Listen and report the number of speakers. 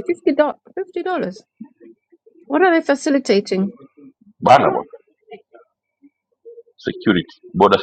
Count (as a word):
two